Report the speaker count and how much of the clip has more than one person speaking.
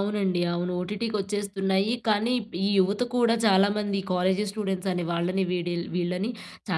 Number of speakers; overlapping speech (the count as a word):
one, no overlap